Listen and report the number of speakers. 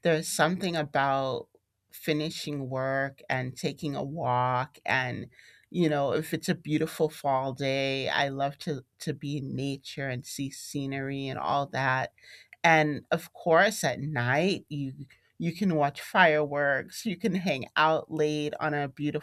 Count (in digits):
1